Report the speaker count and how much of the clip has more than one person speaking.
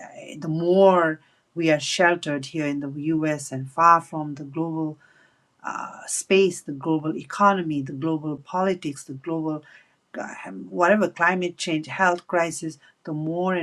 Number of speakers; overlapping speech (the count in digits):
1, no overlap